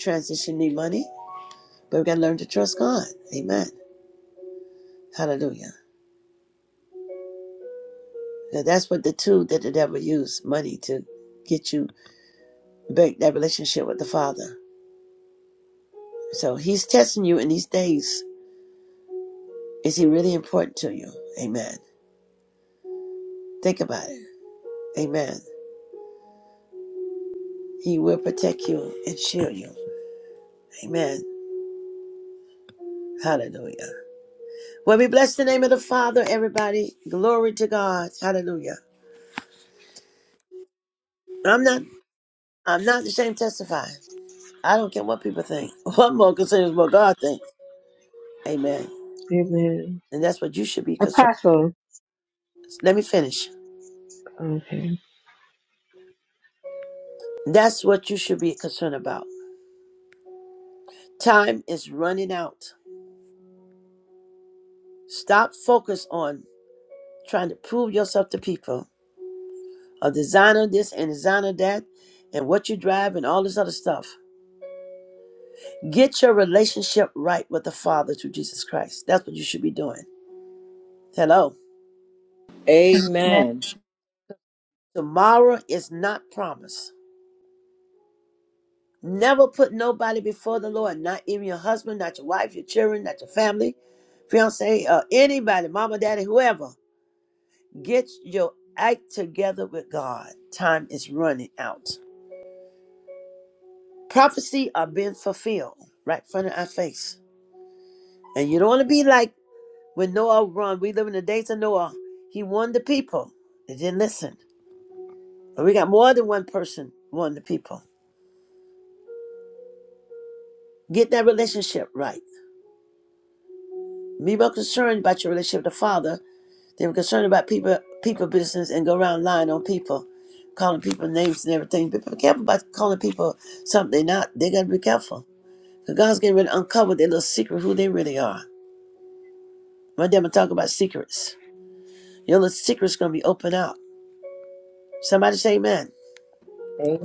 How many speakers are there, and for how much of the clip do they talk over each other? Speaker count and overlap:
3, under 1%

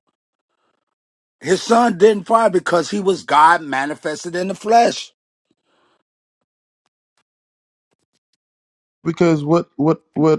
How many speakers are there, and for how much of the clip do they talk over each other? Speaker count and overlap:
2, no overlap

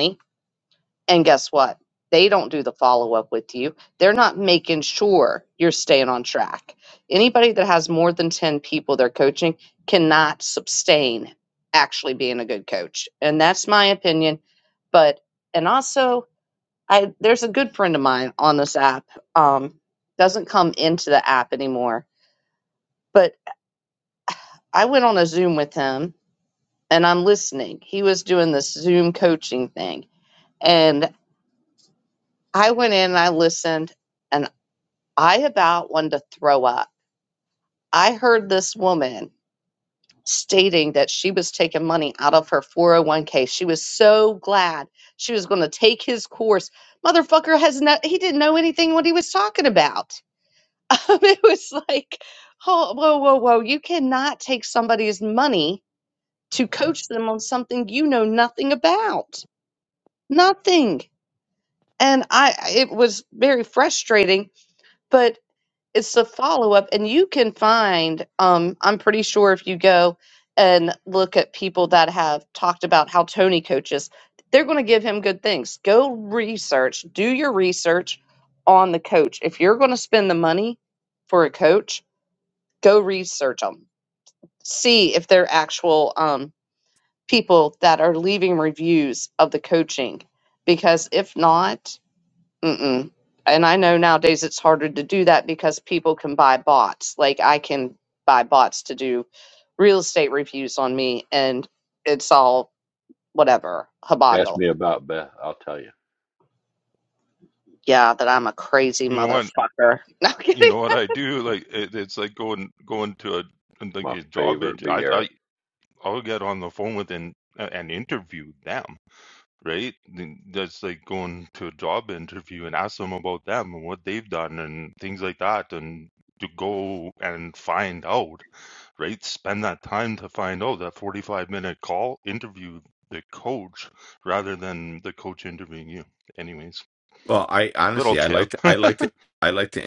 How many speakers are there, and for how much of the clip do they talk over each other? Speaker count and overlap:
4, about 2%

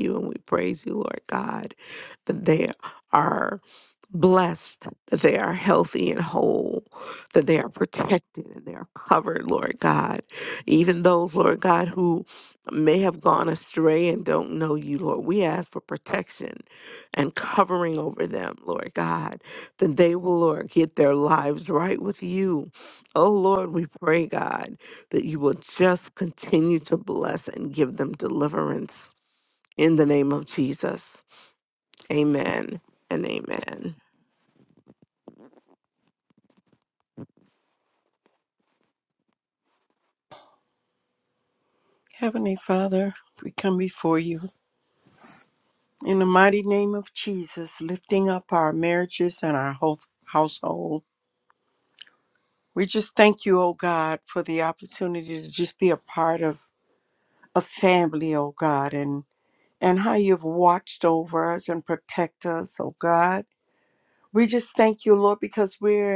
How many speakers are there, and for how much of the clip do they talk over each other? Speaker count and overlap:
2, no overlap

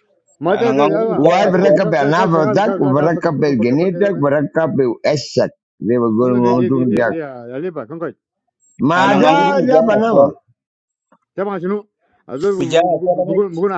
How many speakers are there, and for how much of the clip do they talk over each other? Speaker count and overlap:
3, about 44%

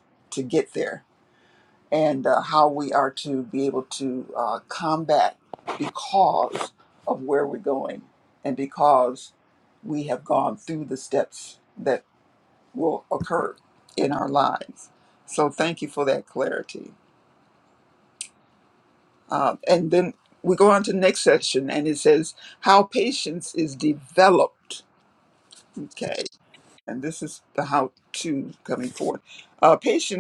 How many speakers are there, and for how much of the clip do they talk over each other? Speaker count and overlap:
1, no overlap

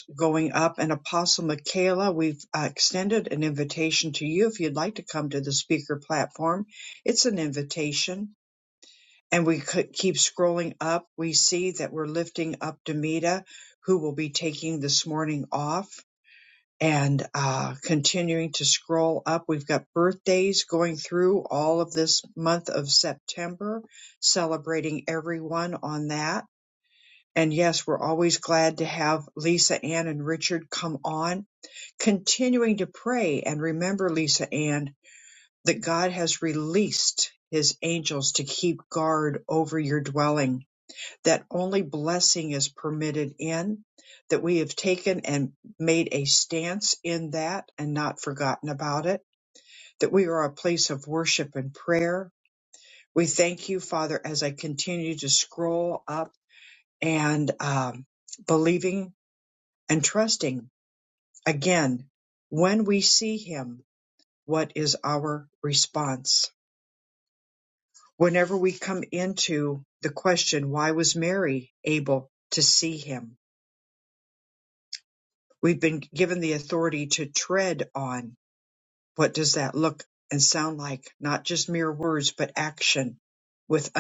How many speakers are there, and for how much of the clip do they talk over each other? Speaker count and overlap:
1, no overlap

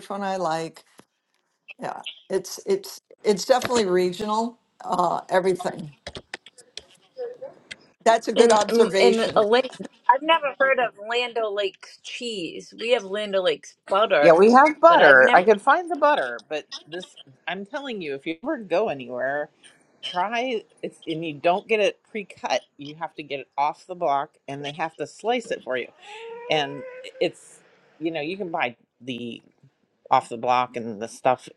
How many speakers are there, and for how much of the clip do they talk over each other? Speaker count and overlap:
3, about 4%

